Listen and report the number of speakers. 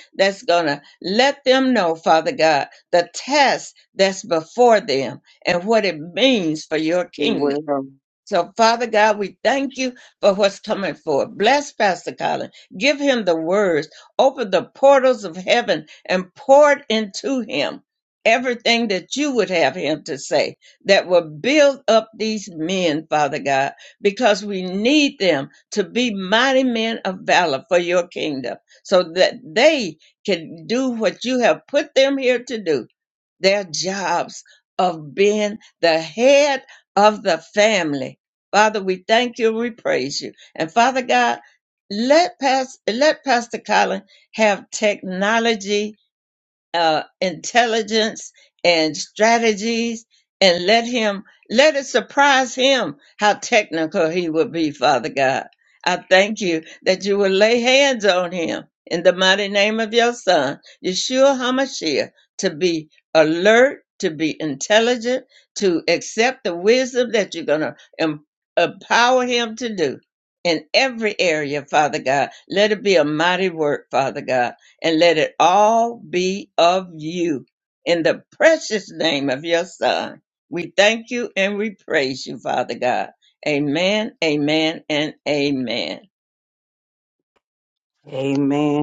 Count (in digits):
2